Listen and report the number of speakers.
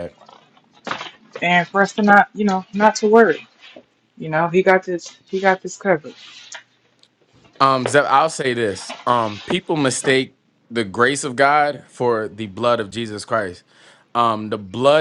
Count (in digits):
2